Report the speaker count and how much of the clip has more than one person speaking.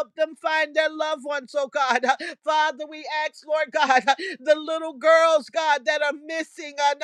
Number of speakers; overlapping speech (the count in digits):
1, no overlap